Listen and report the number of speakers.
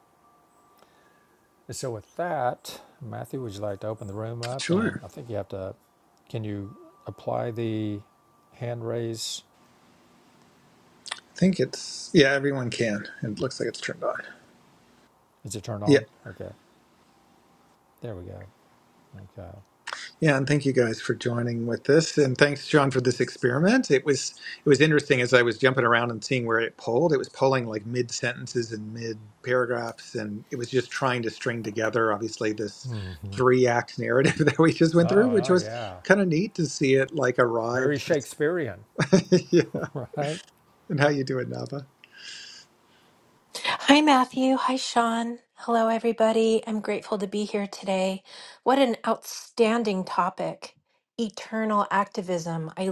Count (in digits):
3